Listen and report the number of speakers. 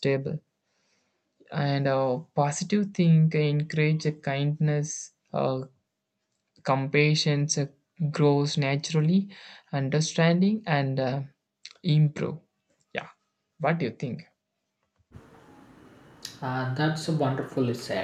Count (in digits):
2